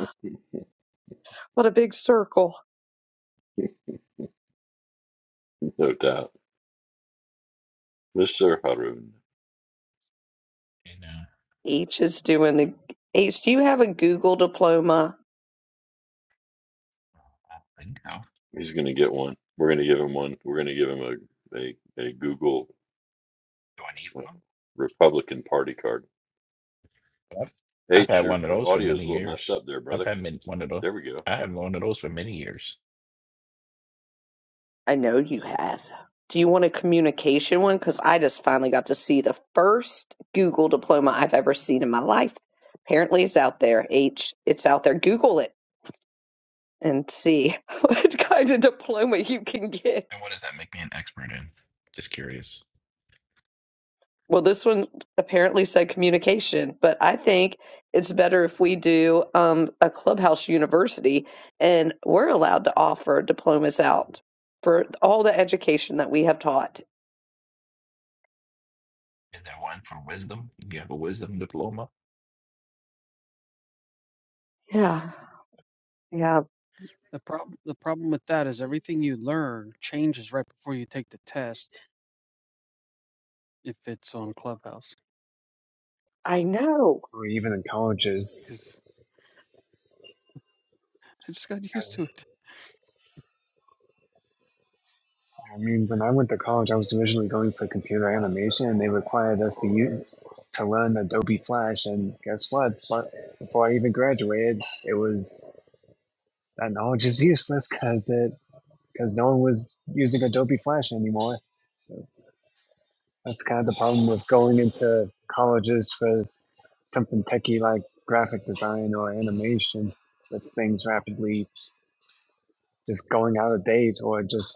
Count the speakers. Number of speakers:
five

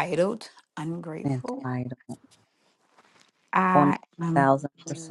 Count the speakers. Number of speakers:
two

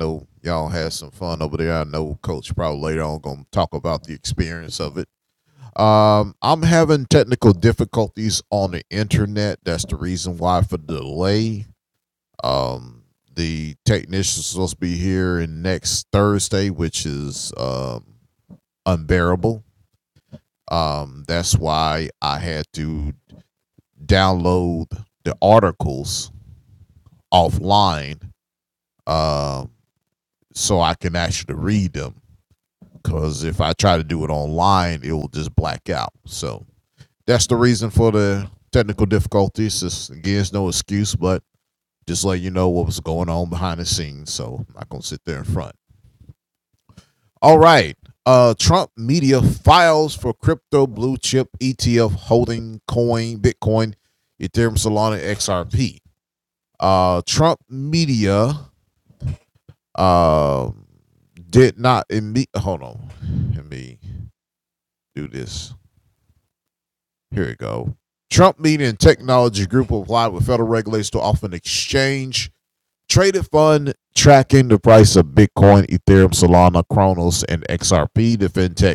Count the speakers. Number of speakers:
one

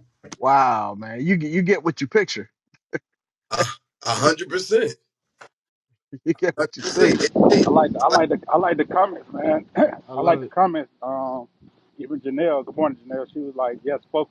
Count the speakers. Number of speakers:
three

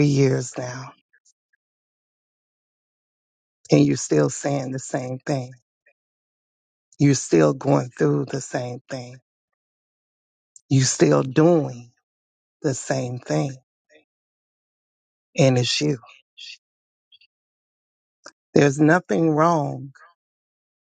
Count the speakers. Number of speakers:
one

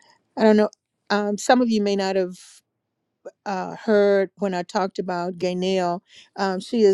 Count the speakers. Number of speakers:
one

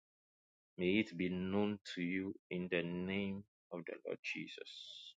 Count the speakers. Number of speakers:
one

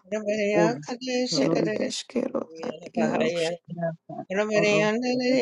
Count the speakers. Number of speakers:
three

